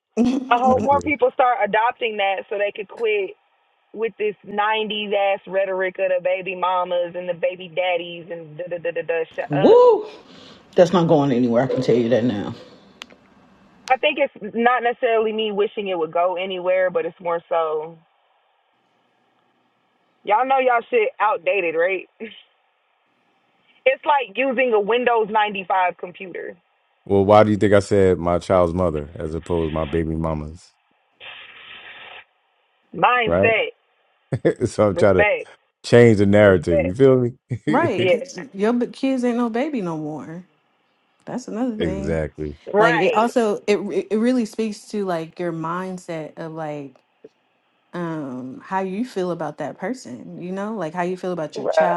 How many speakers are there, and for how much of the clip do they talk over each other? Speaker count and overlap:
four, about 7%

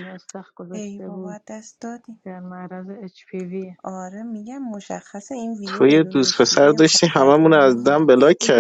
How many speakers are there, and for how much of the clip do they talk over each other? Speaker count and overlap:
three, about 37%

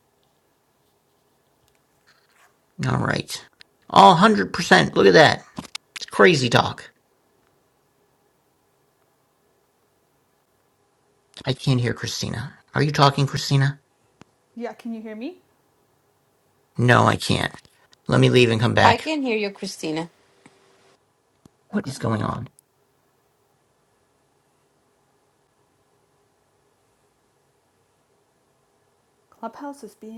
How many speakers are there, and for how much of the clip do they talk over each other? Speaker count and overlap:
three, about 1%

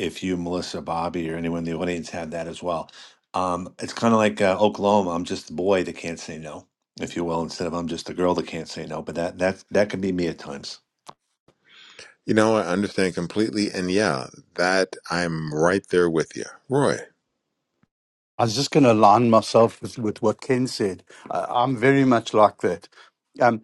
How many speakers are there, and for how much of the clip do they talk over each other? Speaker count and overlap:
three, no overlap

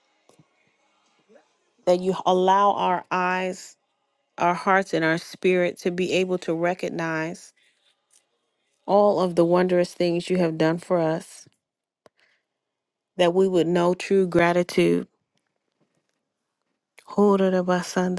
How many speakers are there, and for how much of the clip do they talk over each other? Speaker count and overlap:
one, no overlap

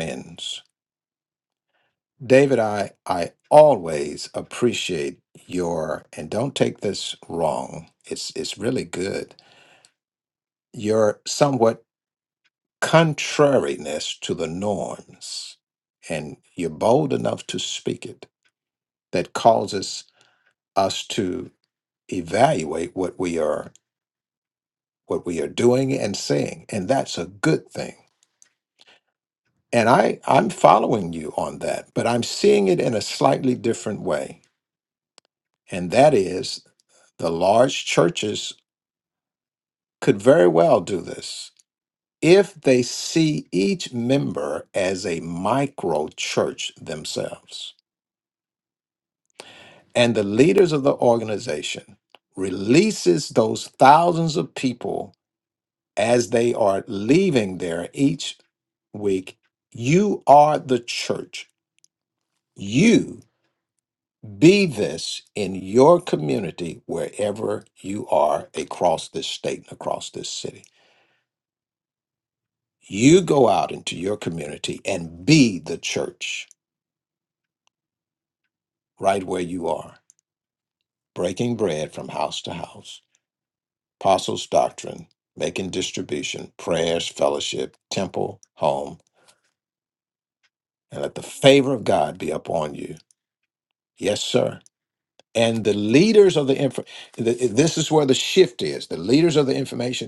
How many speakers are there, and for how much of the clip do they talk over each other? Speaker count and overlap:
one, no overlap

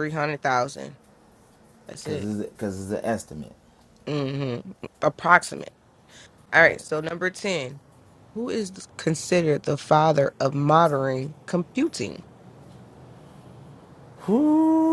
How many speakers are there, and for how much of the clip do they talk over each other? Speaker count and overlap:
two, about 4%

